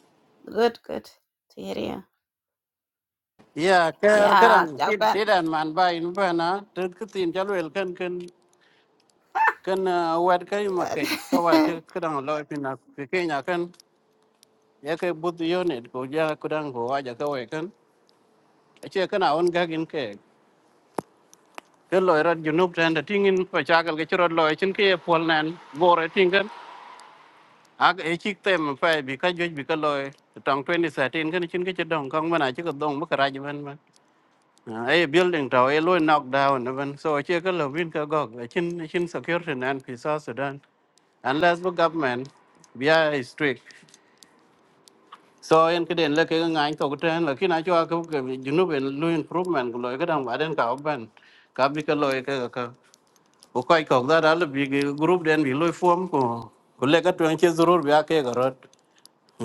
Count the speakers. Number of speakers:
2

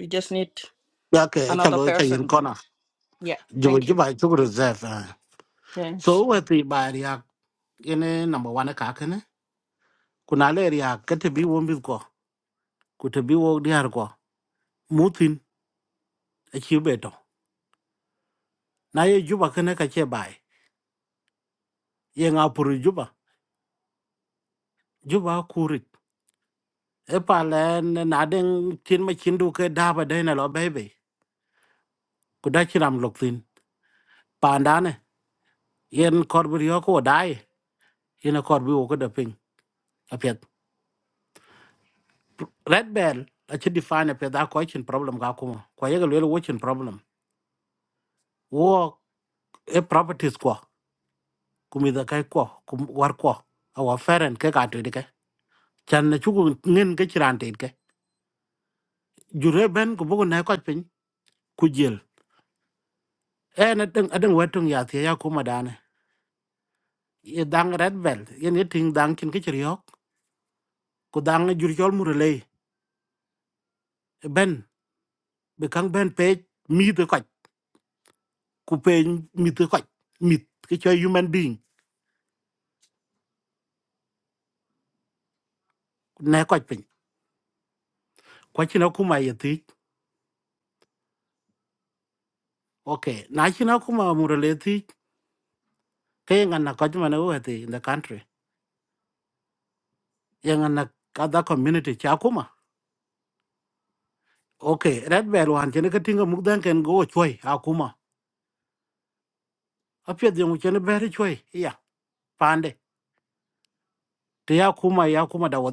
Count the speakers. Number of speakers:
2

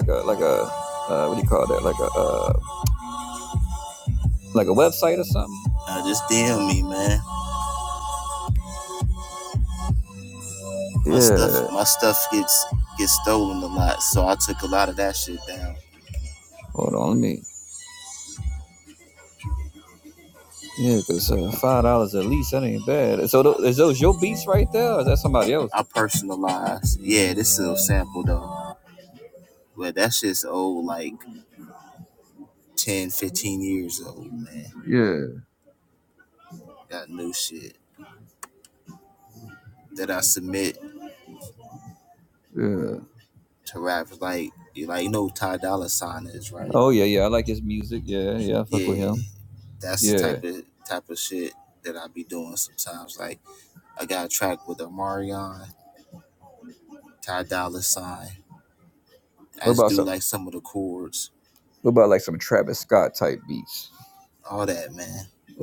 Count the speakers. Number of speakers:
2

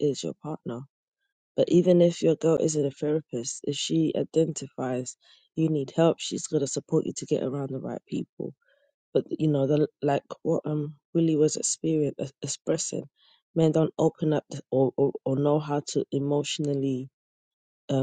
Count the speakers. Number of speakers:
1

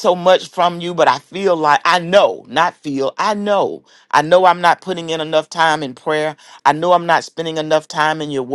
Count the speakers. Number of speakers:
1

